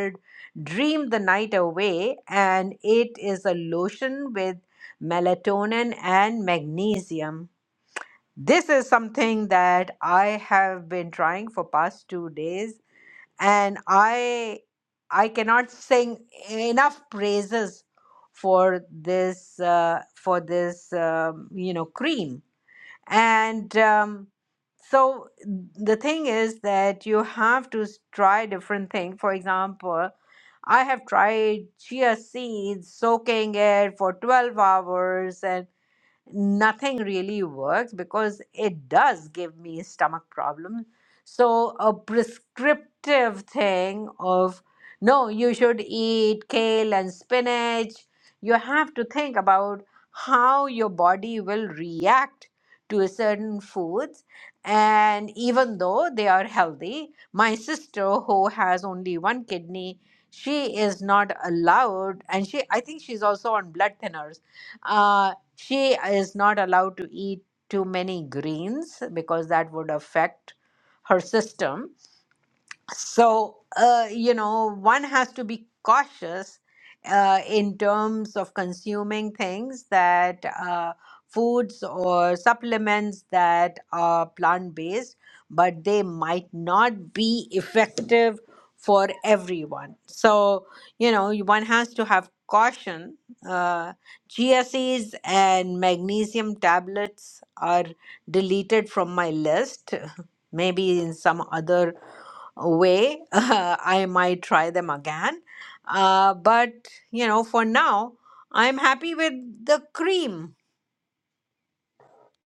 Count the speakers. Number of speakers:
1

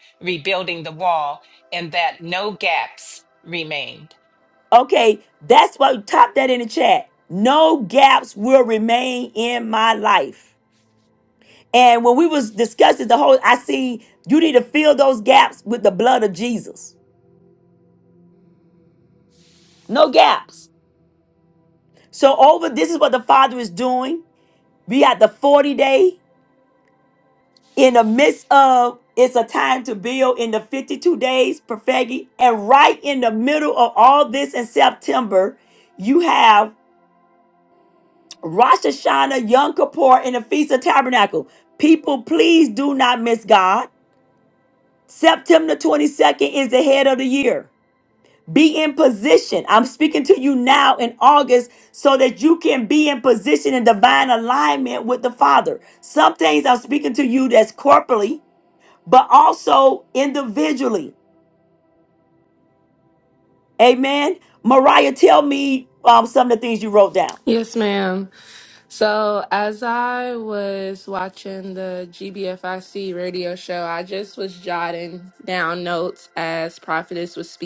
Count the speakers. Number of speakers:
3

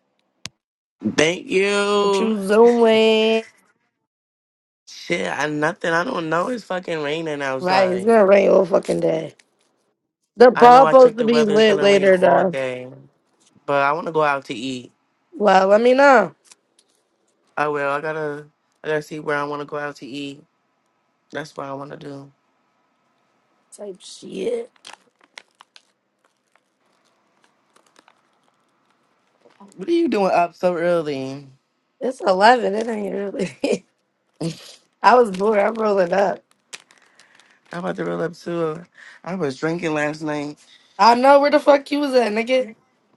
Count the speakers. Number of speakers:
2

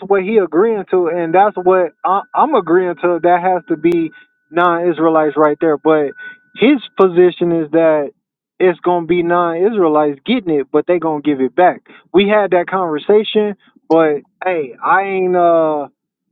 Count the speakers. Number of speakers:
1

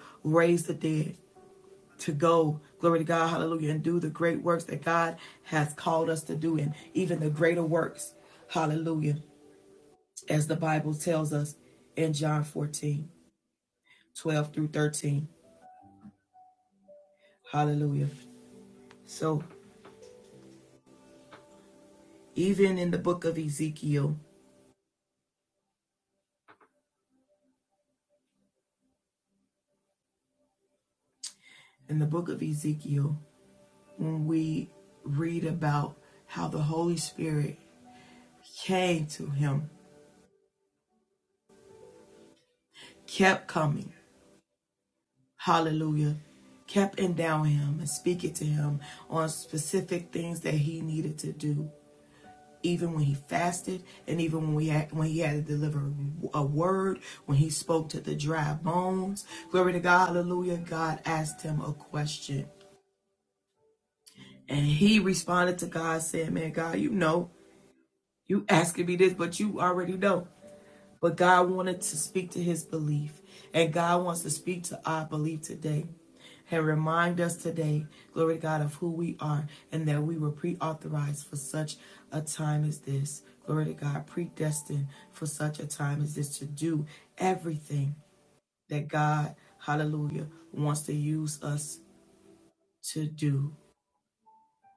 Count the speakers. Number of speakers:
1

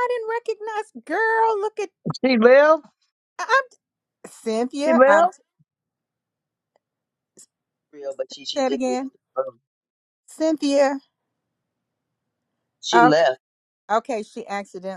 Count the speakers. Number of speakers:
3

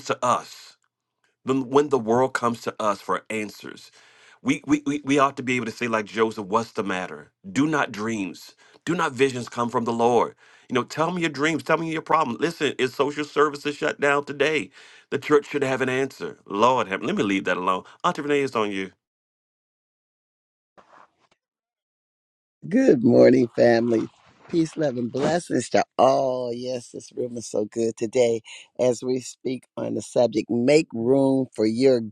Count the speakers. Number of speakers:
2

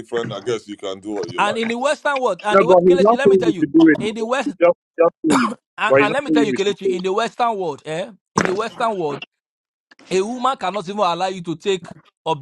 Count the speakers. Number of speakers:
3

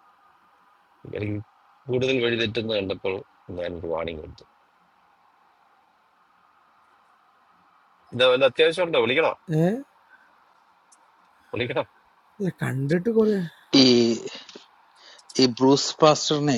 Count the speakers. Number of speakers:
3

